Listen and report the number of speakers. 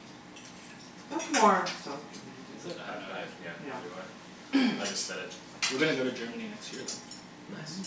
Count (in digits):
3